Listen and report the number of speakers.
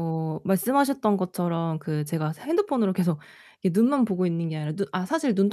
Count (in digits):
1